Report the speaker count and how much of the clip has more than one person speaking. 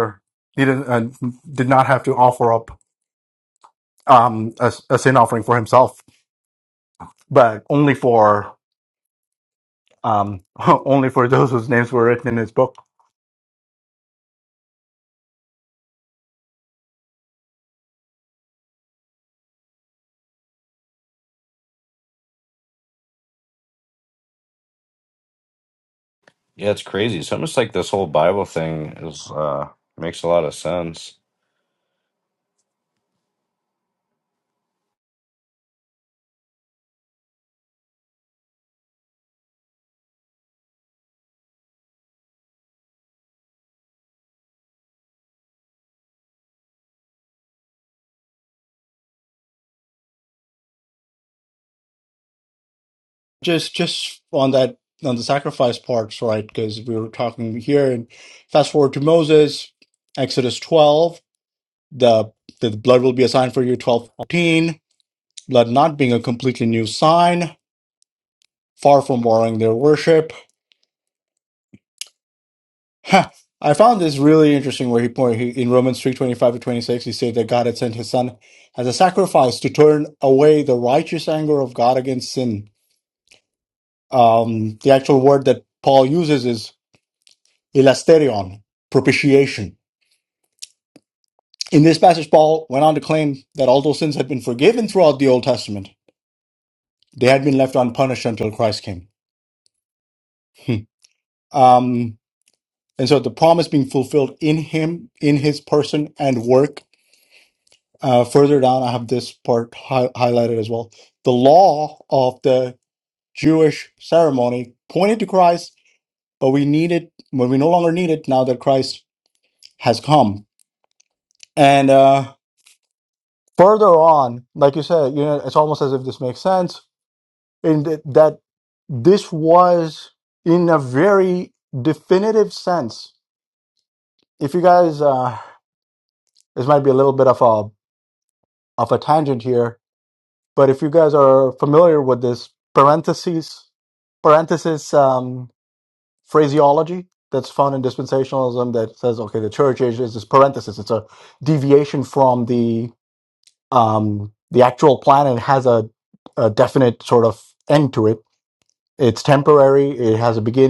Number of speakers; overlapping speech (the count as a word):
two, no overlap